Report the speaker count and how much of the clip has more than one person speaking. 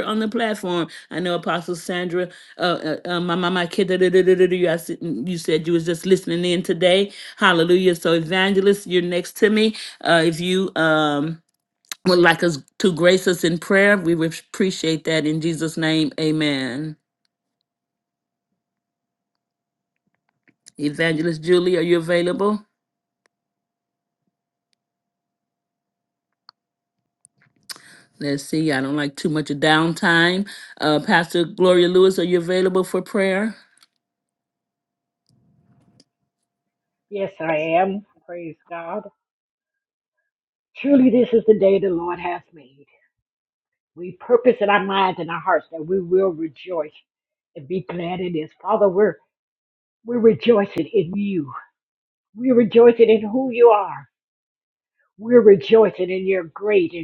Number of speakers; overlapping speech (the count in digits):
2, no overlap